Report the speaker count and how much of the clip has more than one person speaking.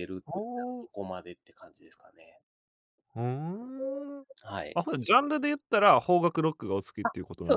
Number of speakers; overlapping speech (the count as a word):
two, about 5%